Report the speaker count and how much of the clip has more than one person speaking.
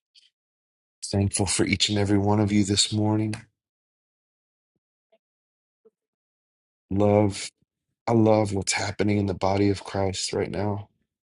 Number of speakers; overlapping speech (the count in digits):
1, no overlap